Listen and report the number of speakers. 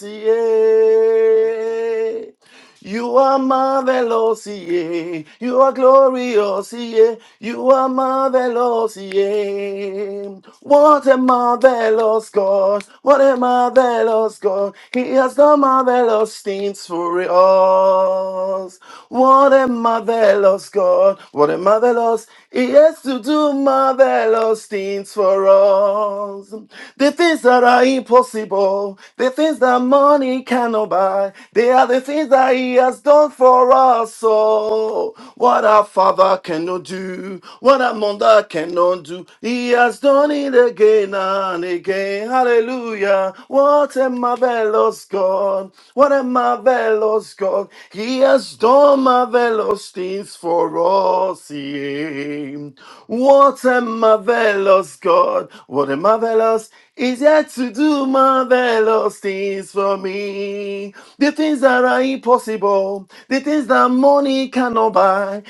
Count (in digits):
1